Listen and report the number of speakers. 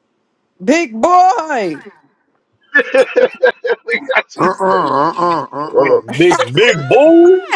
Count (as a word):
four